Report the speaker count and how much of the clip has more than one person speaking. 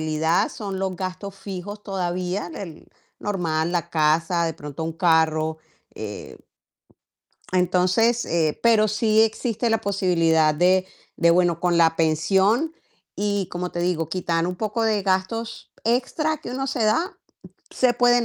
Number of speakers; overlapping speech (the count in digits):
1, no overlap